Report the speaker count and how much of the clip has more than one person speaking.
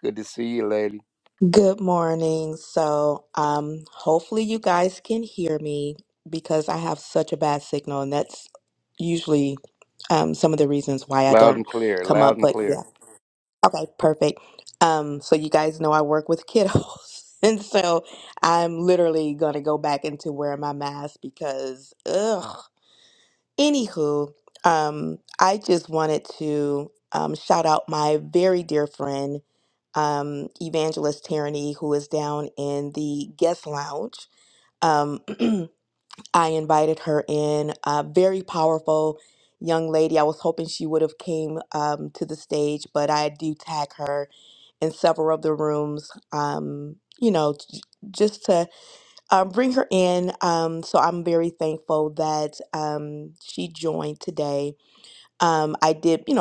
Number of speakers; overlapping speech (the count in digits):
2, about 2%